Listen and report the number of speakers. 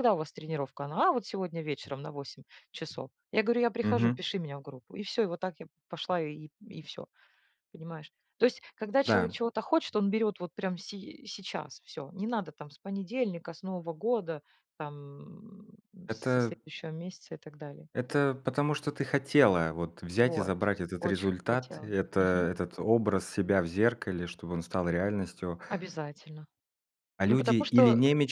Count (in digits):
2